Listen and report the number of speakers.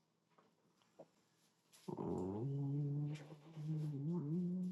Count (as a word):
zero